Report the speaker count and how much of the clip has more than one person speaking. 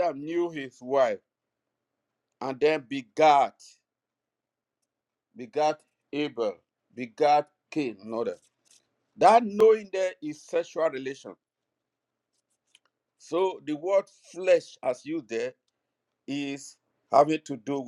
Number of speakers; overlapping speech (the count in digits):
1, no overlap